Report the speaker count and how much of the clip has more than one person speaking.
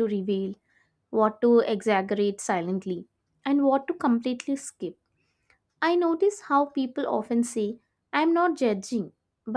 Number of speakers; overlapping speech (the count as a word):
one, no overlap